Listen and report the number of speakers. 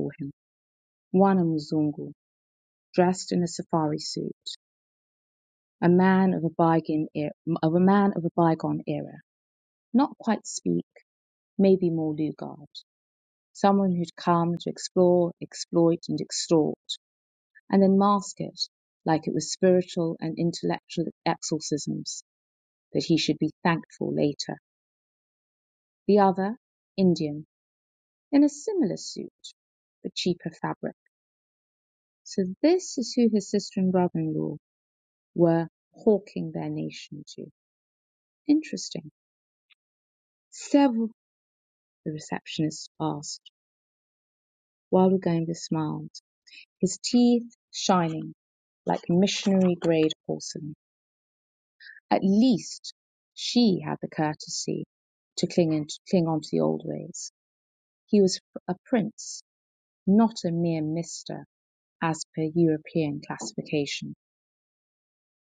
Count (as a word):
one